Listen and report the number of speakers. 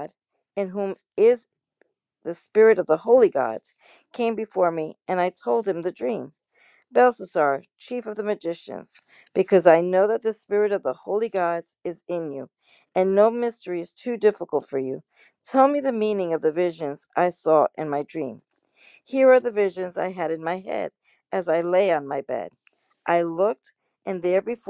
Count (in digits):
1